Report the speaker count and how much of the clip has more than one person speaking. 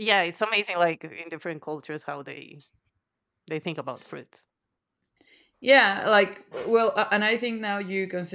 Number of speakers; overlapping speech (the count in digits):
2, no overlap